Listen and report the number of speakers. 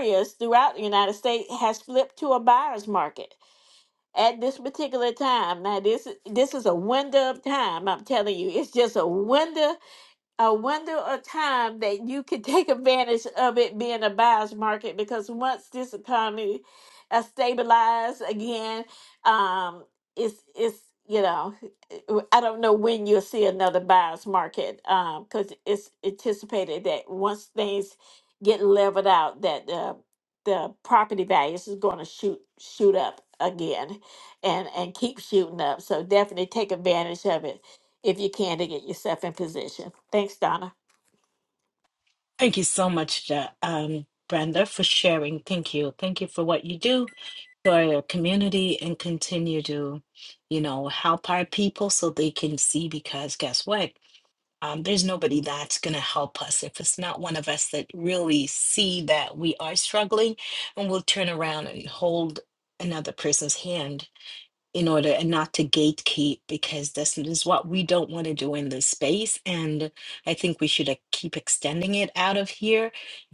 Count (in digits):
2